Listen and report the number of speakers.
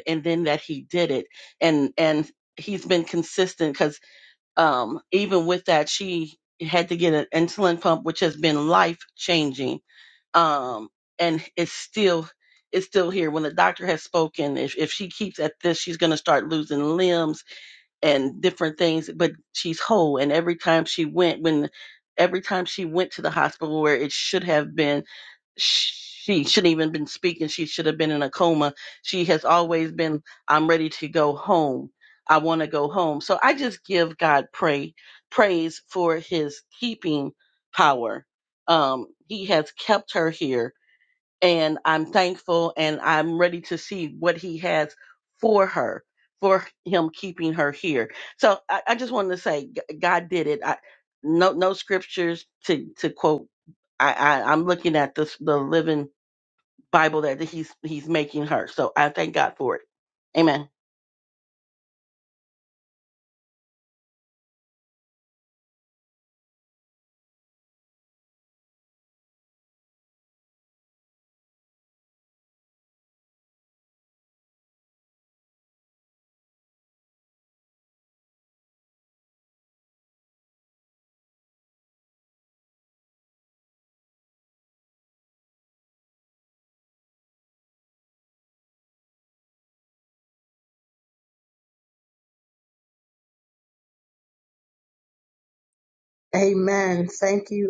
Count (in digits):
2